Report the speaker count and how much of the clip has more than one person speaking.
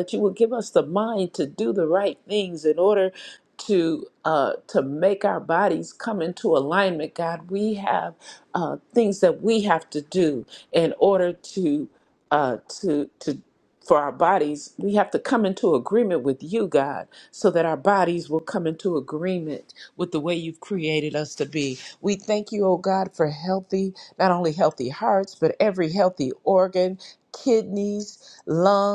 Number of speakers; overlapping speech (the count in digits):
1, no overlap